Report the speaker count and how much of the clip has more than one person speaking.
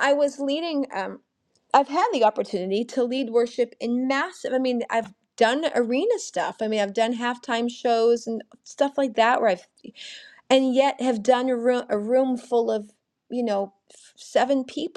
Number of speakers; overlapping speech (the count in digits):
1, no overlap